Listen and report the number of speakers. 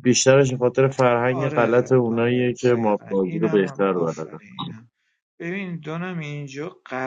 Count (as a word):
two